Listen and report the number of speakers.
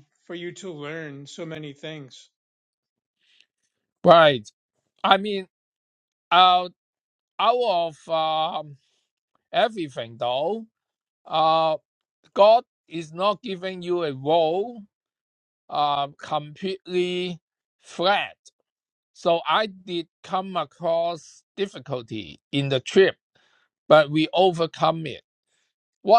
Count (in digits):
2